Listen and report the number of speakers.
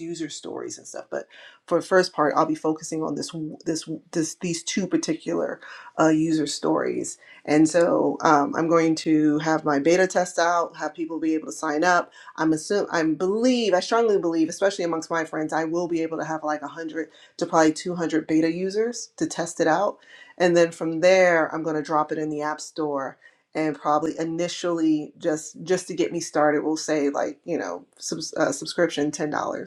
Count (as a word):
one